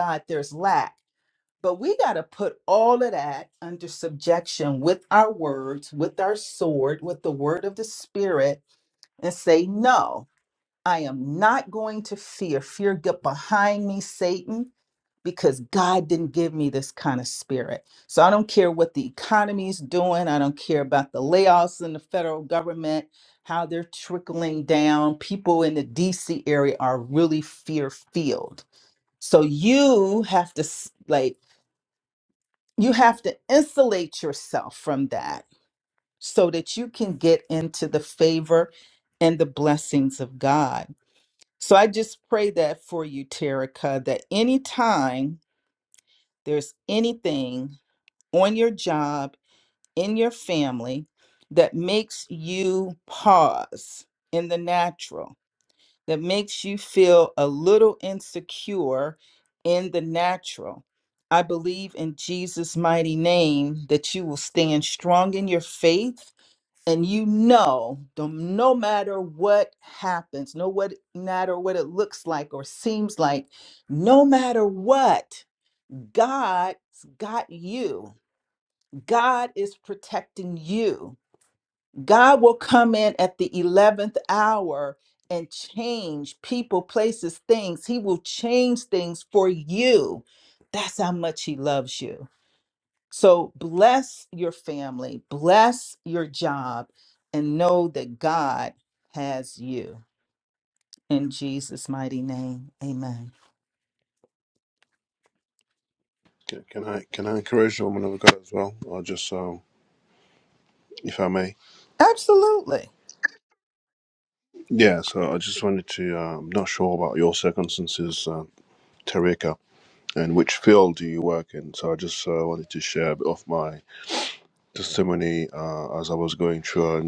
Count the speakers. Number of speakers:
2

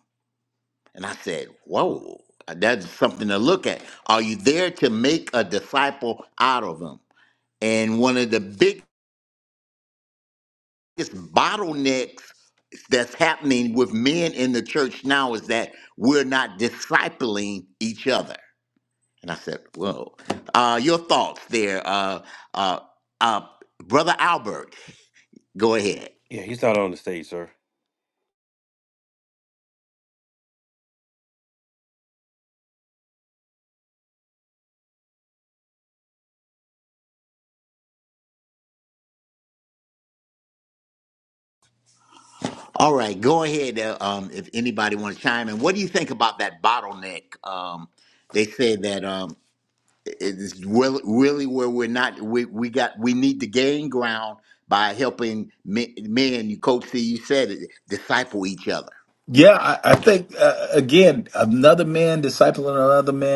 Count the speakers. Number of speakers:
3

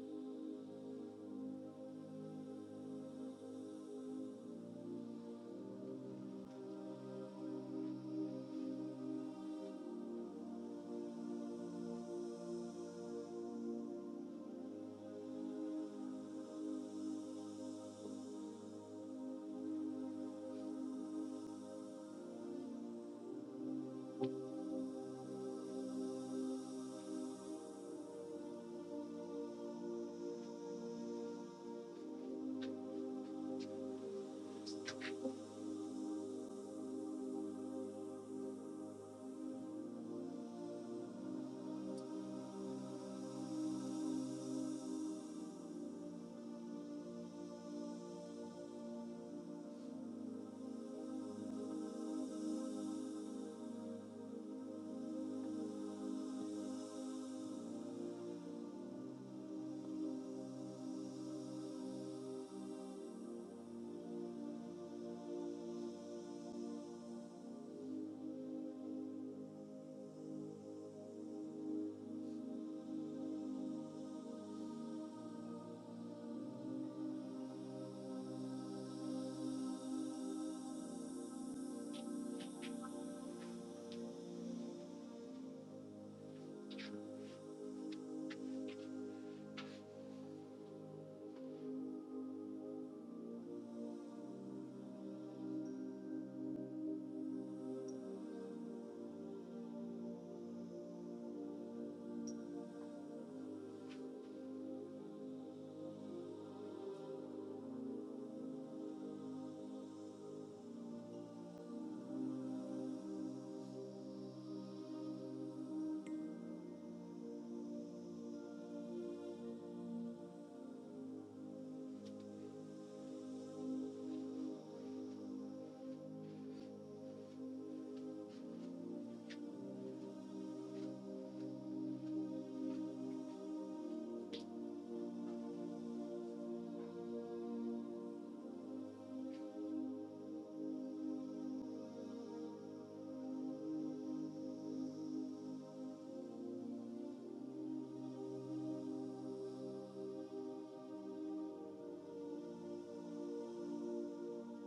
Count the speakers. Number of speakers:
0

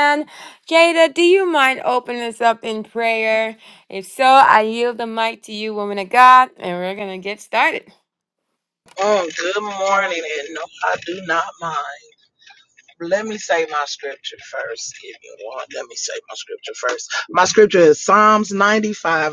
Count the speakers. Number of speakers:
2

